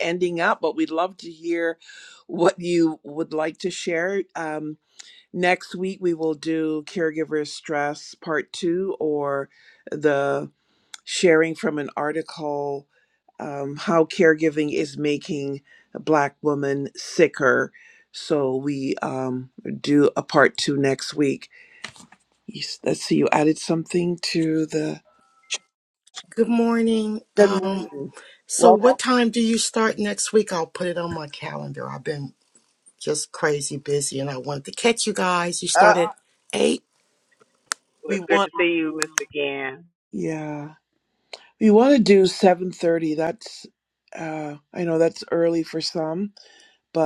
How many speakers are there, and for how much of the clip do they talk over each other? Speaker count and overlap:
3, about 3%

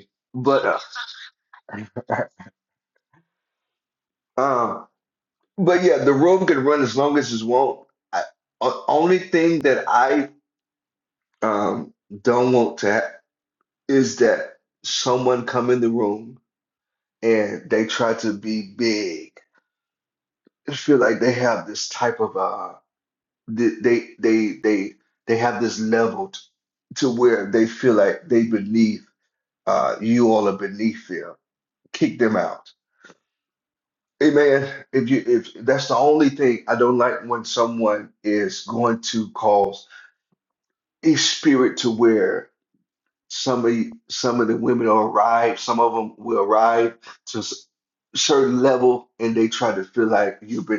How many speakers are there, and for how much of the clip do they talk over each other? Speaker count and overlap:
1, no overlap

